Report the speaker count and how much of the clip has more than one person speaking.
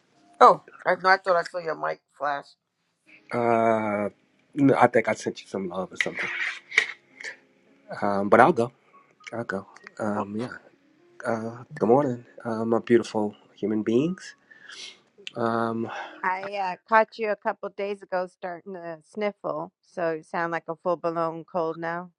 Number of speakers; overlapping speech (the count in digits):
3, no overlap